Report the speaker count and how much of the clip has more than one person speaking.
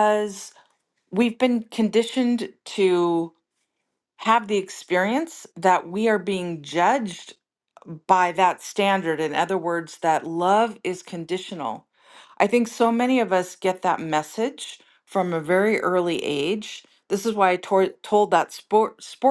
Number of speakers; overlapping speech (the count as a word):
one, no overlap